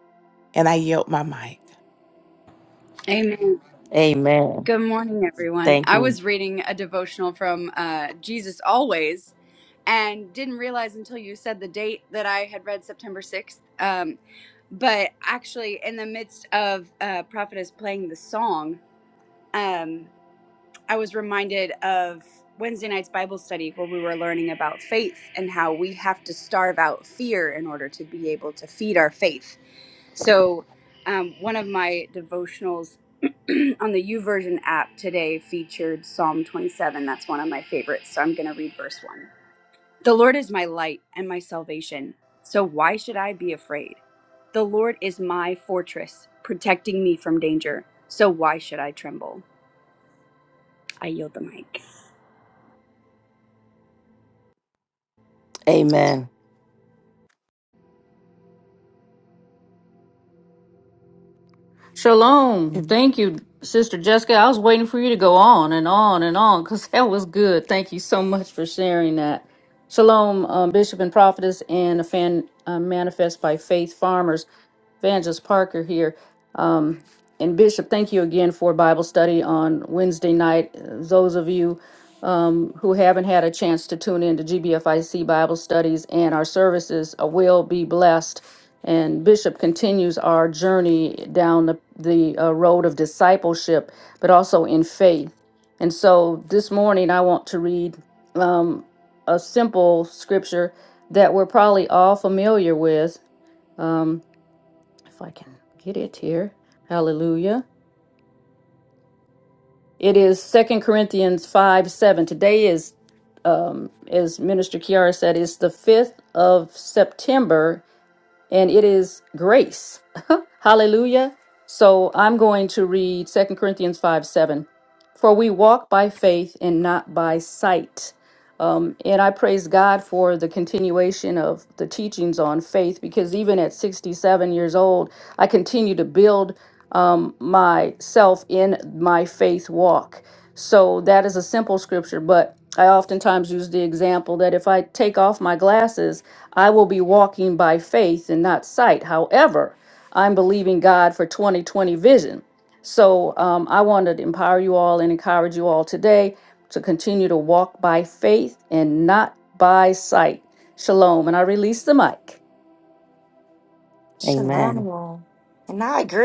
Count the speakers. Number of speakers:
five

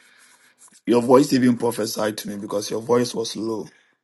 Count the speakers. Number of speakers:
one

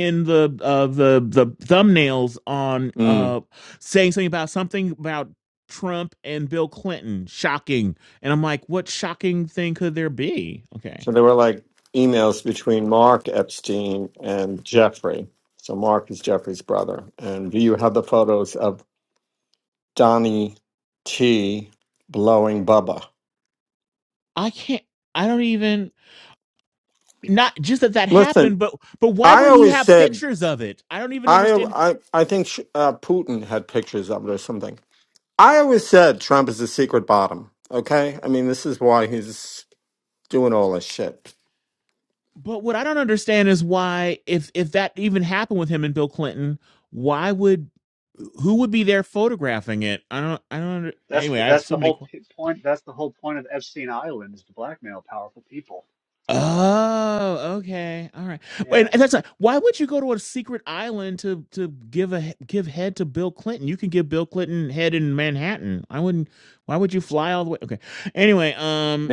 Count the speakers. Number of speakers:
three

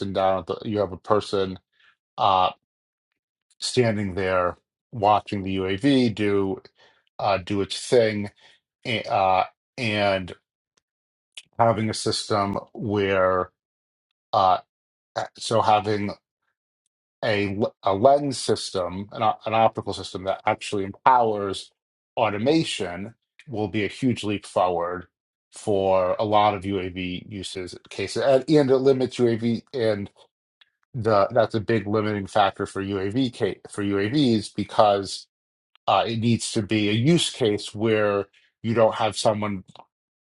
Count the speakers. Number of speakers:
one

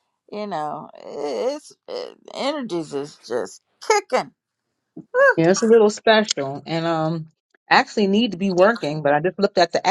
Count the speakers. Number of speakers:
two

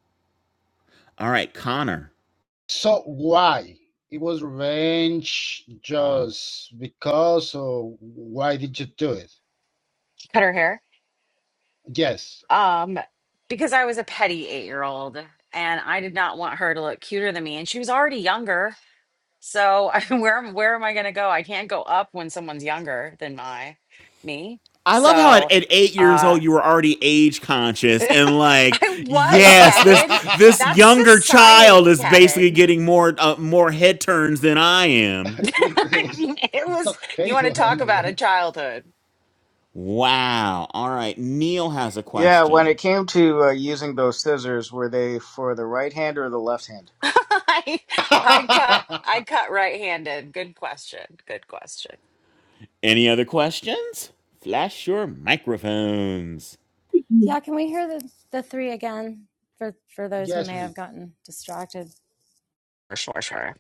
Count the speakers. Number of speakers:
five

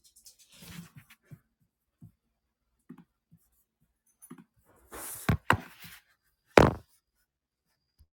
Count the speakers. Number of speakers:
zero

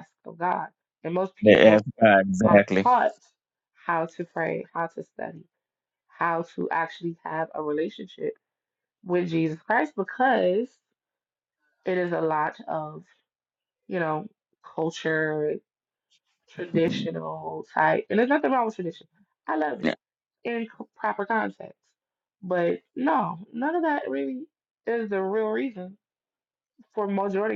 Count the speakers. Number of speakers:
two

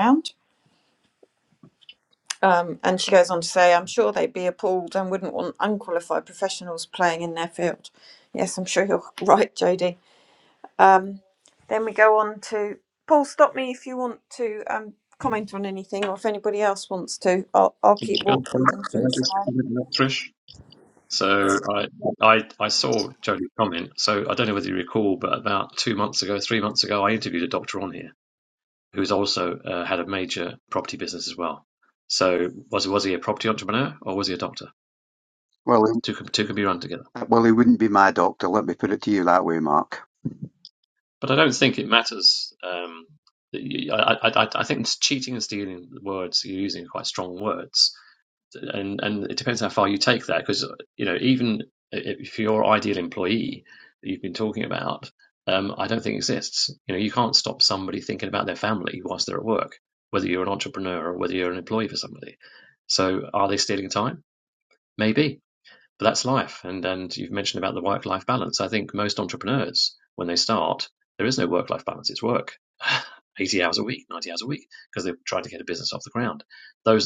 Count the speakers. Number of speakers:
three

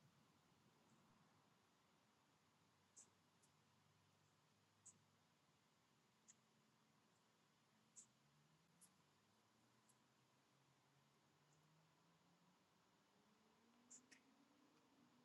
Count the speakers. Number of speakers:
zero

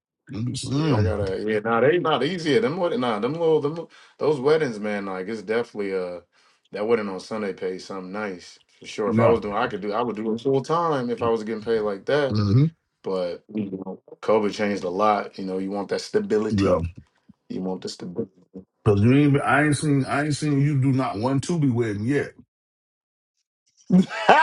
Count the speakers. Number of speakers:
two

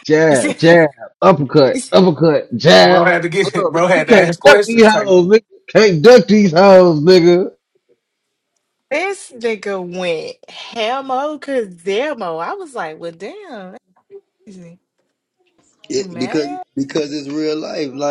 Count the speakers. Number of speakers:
four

